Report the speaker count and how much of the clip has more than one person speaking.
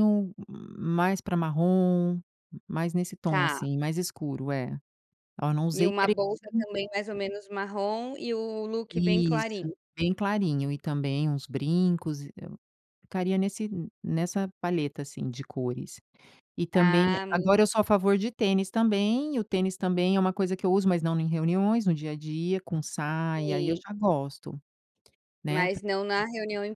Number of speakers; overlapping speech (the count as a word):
two, about 12%